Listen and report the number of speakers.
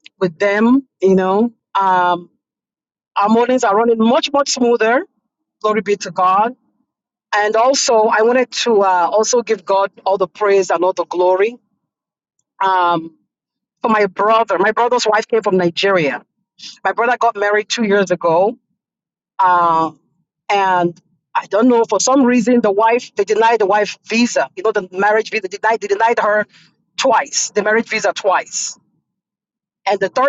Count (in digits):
1